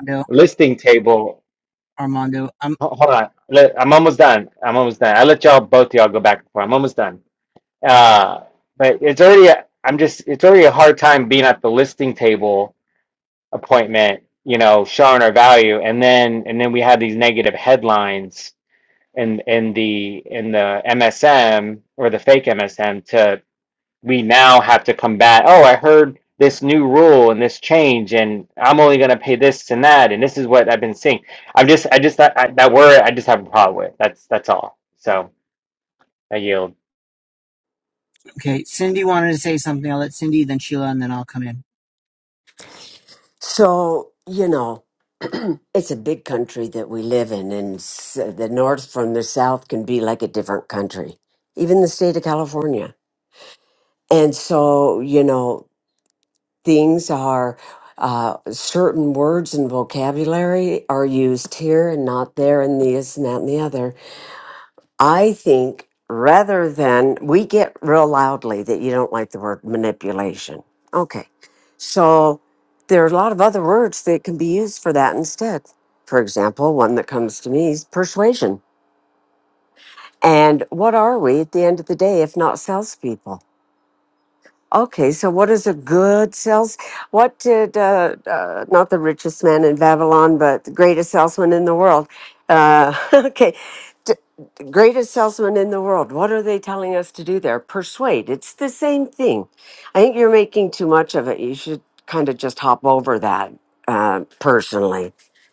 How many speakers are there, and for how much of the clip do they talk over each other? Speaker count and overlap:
3, no overlap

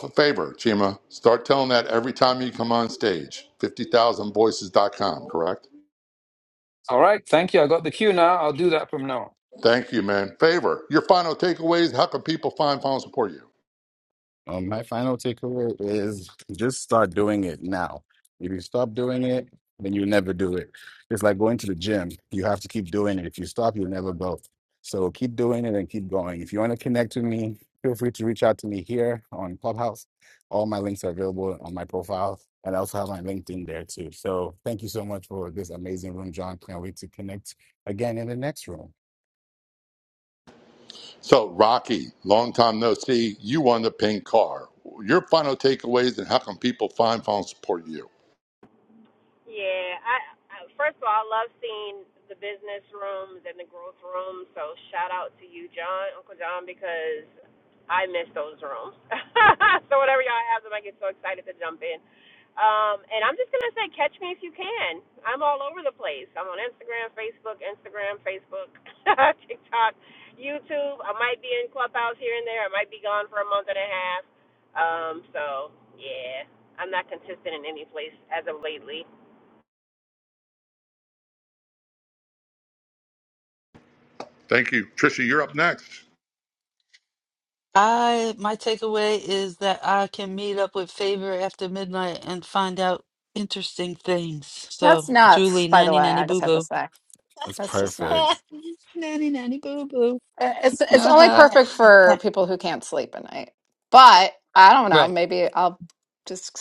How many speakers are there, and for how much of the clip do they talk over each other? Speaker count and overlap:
6, about 3%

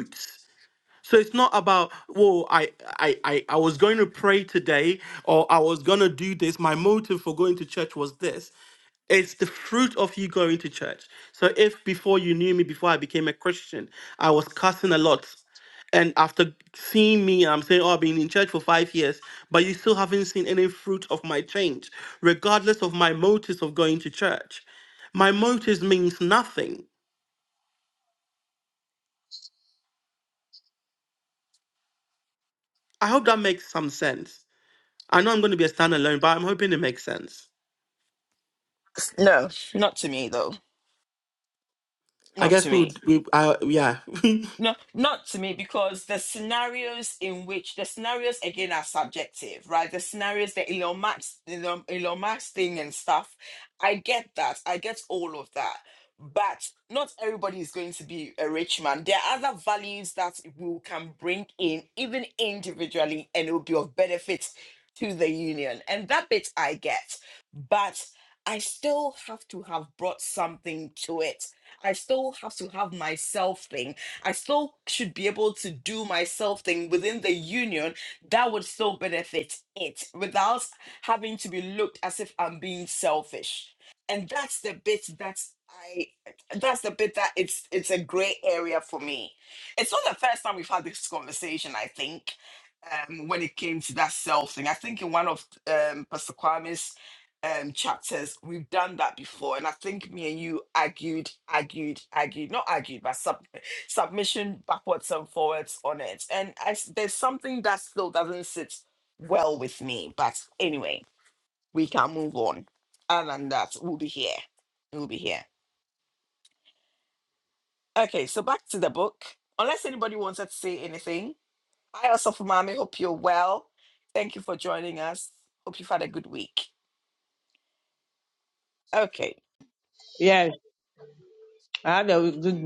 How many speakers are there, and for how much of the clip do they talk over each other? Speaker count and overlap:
3, under 1%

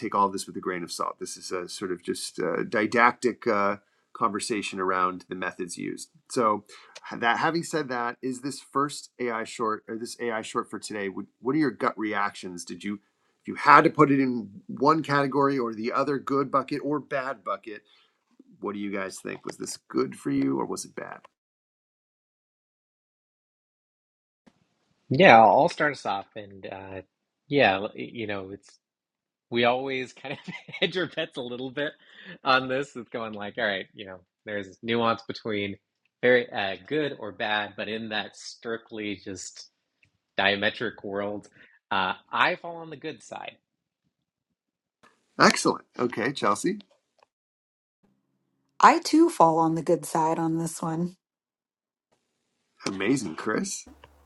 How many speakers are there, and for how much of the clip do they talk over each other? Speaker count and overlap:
3, no overlap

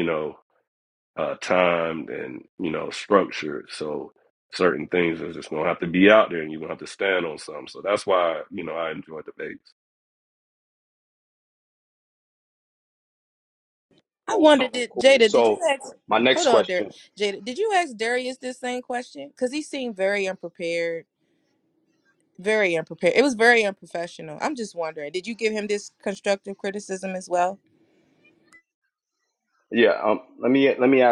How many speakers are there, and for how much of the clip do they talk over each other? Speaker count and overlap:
3, about 4%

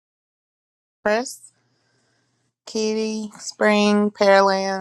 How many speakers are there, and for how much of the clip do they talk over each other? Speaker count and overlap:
1, no overlap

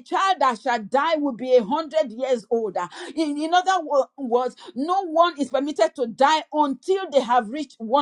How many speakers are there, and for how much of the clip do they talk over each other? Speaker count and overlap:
1, no overlap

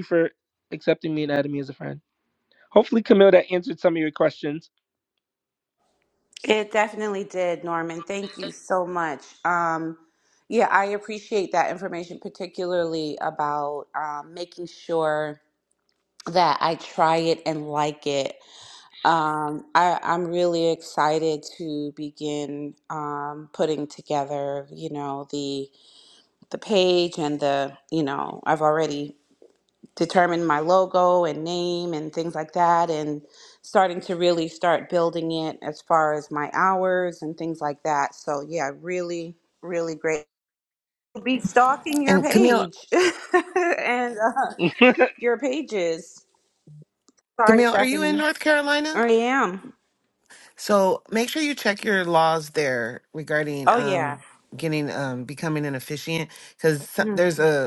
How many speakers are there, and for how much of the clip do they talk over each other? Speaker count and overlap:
3, about 4%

